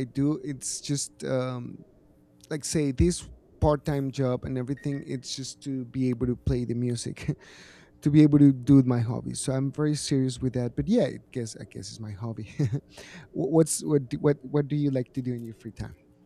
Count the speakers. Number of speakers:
1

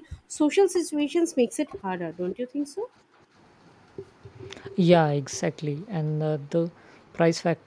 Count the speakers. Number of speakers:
2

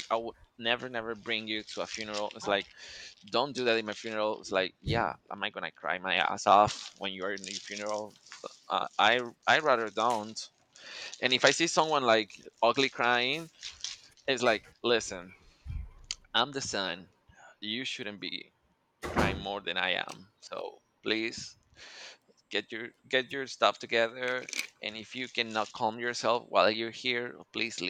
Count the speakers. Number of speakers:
1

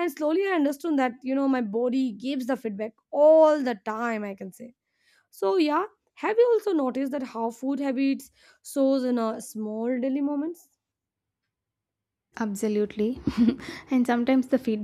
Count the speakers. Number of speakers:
2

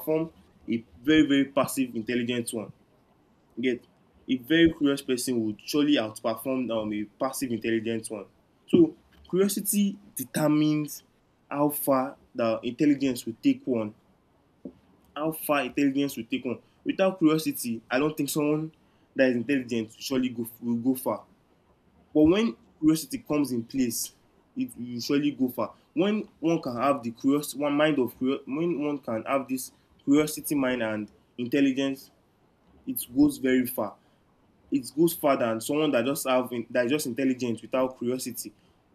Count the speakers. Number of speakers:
1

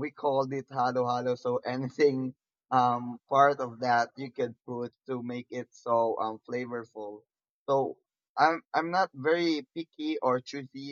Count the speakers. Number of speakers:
1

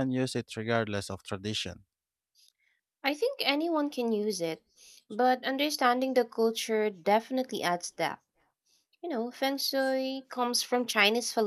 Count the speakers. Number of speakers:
2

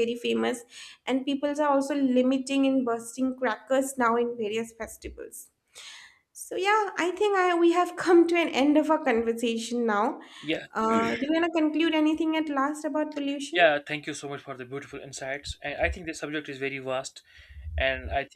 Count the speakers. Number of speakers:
2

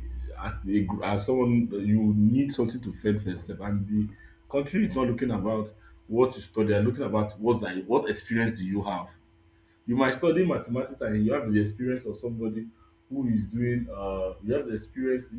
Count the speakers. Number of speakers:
1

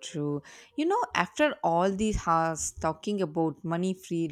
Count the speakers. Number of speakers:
1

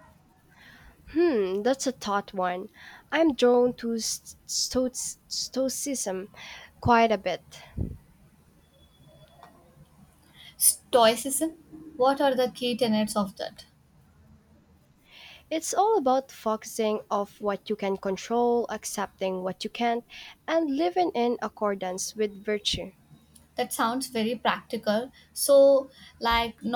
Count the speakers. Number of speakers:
2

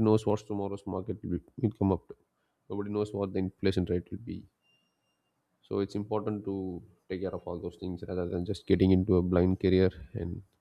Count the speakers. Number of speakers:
1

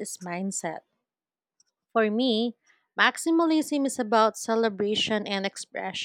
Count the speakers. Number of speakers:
1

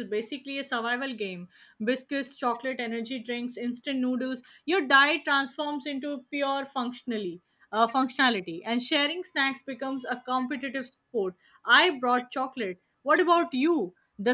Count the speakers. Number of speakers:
1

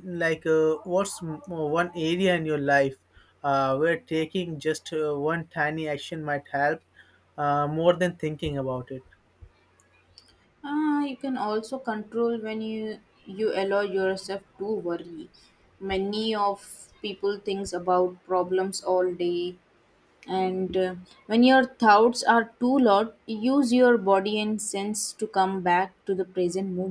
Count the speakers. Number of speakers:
2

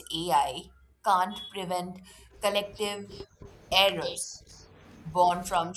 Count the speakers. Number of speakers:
1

